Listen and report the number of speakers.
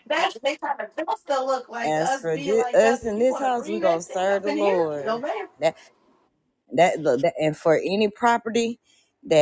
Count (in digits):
2